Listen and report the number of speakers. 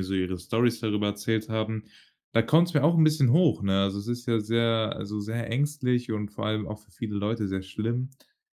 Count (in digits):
1